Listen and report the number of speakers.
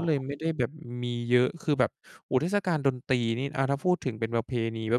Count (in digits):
1